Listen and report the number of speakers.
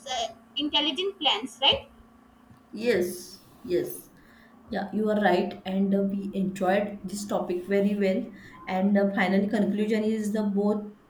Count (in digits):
2